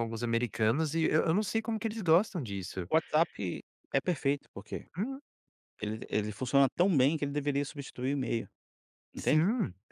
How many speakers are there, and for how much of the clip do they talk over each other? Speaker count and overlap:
two, about 2%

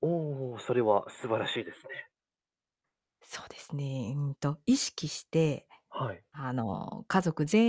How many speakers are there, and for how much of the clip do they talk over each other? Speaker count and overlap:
two, no overlap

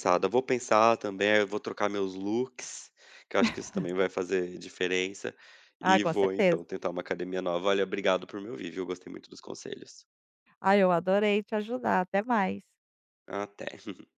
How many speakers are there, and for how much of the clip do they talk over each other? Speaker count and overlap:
two, about 5%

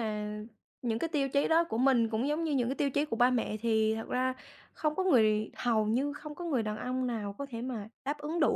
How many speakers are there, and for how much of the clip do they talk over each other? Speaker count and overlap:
one, no overlap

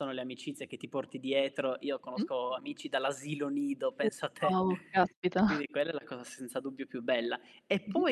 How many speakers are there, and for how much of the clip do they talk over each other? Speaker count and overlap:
two, about 7%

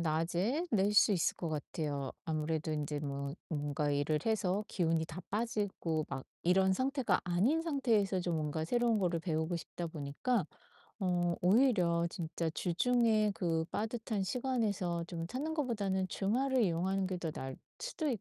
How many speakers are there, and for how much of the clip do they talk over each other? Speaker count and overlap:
one, no overlap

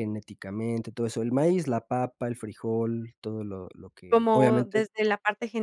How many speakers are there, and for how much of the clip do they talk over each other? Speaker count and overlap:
two, about 13%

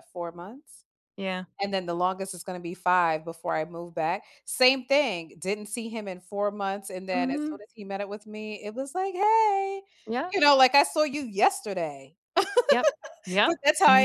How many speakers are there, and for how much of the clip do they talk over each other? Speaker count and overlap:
two, about 5%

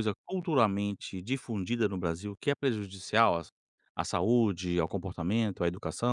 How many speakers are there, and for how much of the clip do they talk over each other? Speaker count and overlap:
one, no overlap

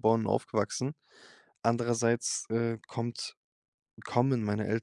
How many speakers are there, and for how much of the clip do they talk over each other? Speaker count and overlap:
one, no overlap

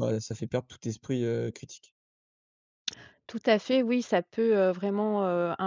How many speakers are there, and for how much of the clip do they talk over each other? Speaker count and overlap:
two, no overlap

